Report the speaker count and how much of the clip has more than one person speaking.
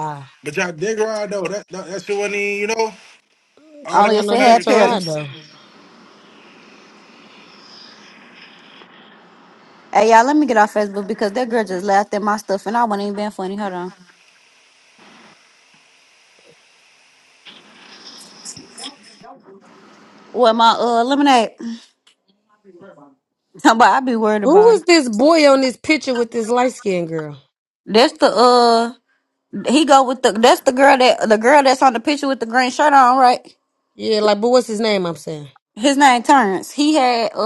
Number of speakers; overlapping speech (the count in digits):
3, about 4%